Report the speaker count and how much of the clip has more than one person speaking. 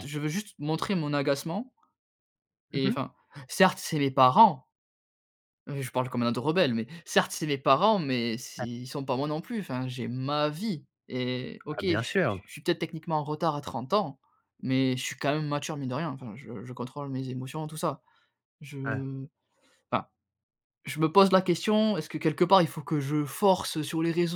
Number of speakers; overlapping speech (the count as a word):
two, about 3%